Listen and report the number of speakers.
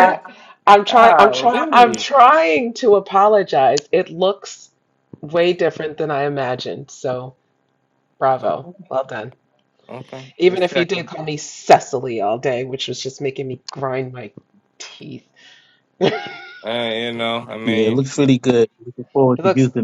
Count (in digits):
3